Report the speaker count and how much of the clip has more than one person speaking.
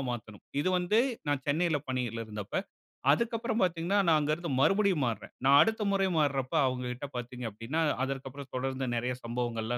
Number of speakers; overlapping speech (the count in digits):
1, no overlap